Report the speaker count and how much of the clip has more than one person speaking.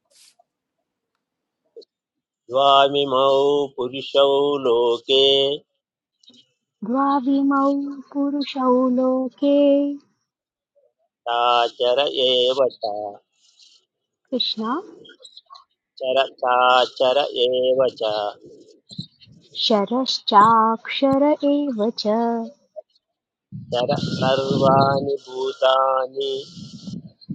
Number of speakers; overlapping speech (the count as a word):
two, no overlap